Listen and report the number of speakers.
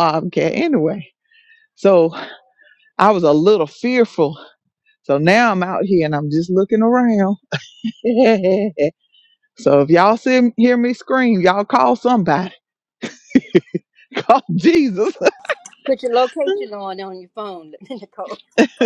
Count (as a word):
two